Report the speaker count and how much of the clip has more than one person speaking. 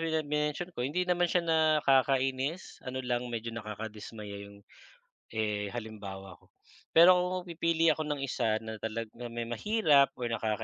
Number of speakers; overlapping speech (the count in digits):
1, no overlap